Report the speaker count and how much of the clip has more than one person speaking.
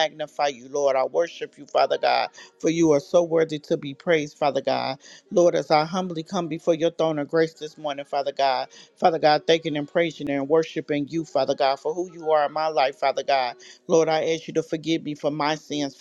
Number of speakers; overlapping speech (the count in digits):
1, no overlap